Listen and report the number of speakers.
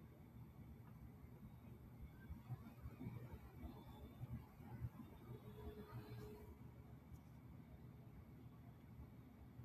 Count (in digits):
0